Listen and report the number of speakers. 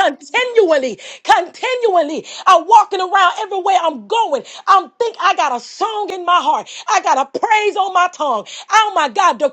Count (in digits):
1